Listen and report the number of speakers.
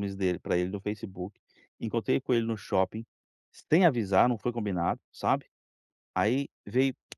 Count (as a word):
one